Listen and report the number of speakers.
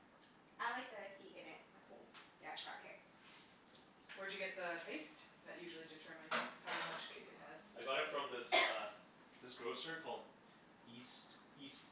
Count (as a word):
three